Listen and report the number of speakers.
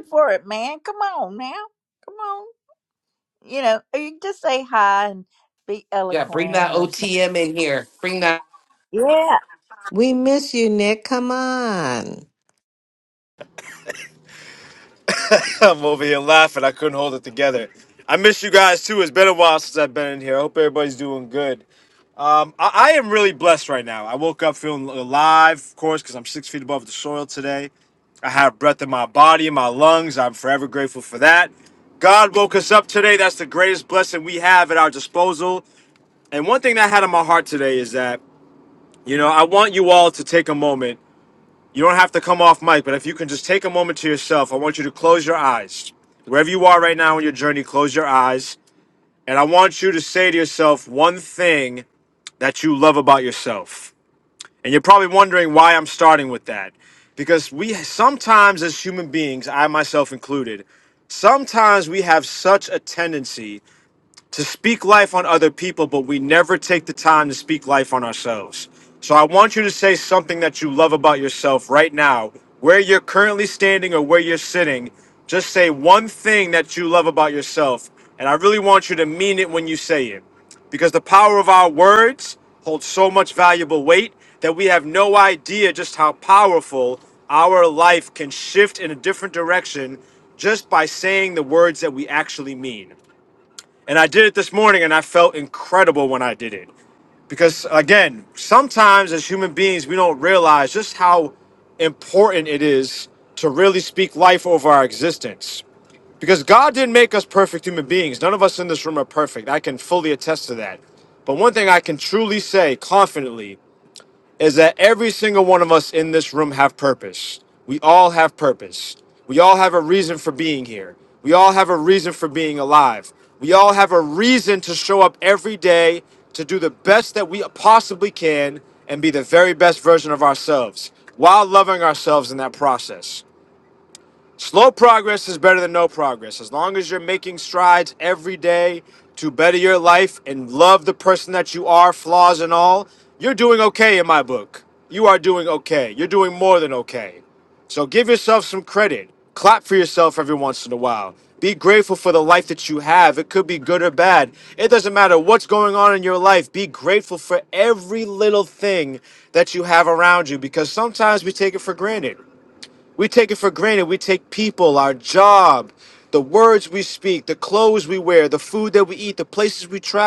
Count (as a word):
four